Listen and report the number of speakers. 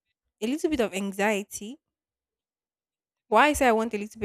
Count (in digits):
1